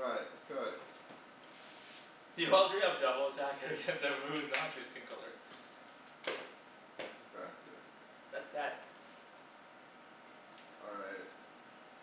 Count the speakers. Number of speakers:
2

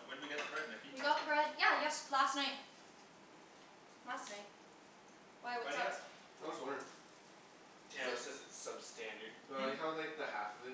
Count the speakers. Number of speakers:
4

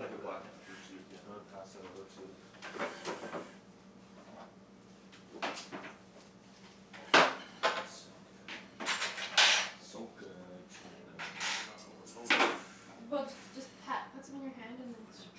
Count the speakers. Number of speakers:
3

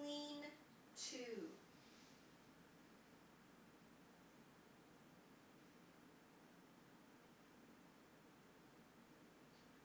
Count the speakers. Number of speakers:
1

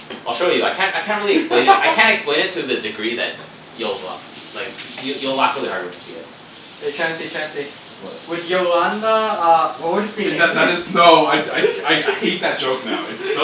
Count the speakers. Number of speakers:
3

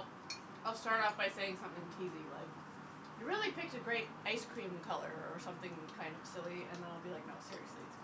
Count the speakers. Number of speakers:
1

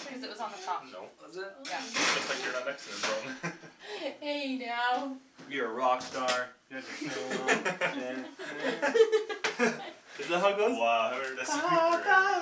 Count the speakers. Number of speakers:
4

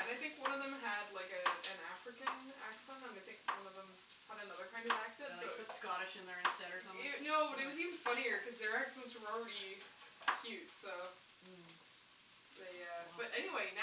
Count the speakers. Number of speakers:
2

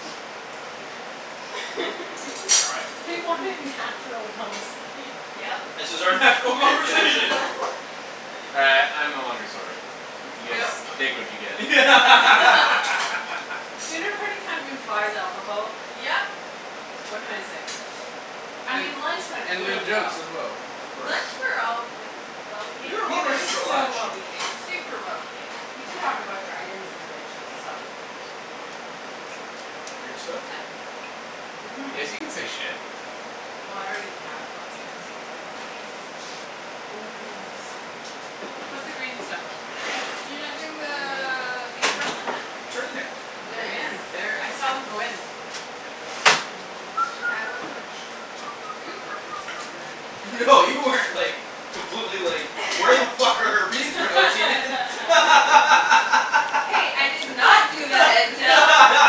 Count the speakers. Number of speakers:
4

